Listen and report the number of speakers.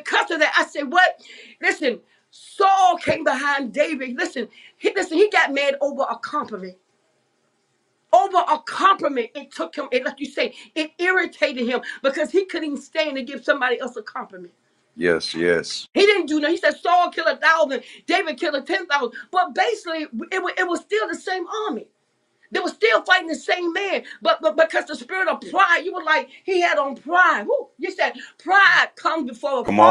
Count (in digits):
2